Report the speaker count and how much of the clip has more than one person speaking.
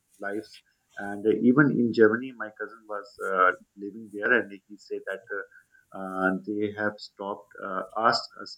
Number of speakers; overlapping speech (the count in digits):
1, no overlap